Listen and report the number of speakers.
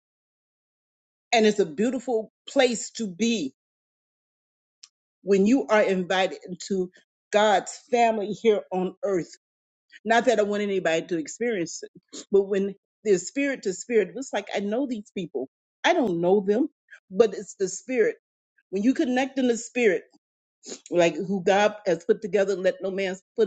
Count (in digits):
1